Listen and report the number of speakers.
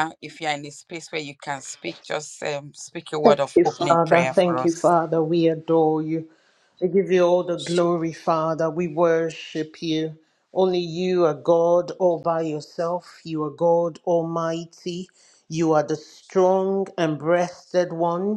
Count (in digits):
2